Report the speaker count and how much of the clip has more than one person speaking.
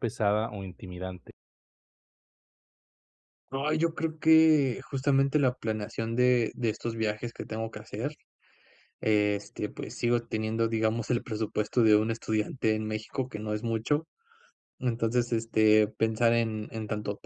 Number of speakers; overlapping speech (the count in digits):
2, no overlap